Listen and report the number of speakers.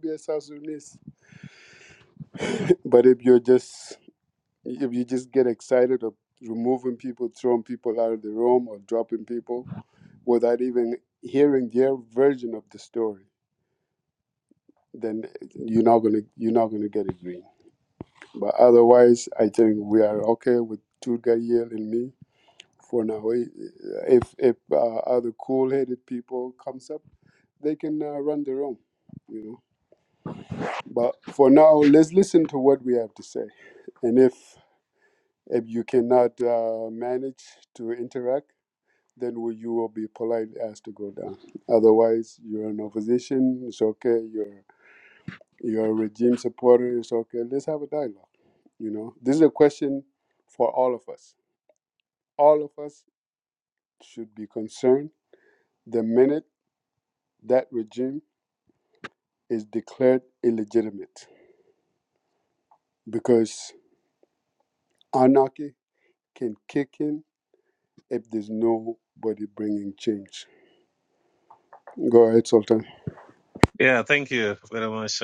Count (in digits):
2